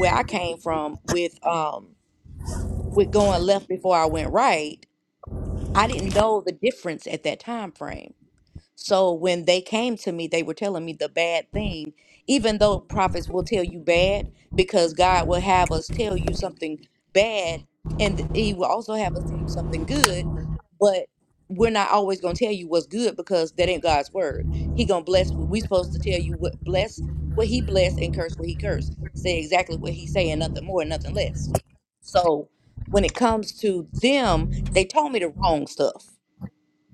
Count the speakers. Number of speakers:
1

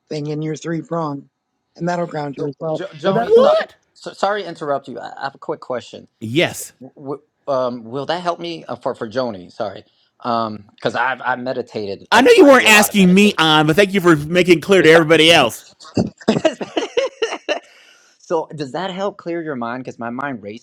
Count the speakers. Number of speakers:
3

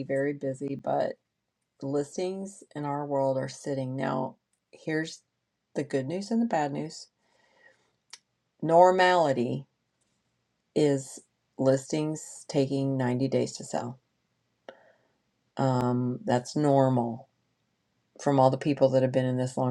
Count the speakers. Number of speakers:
1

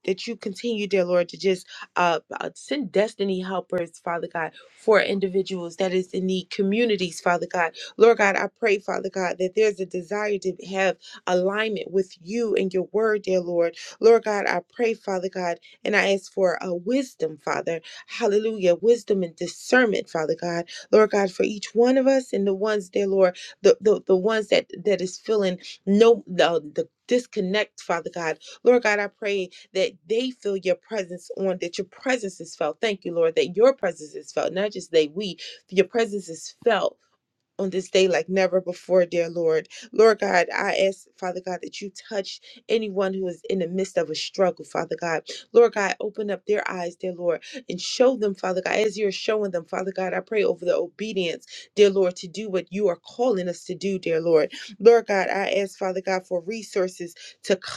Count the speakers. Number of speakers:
1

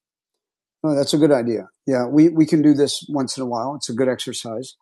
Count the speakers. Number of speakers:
1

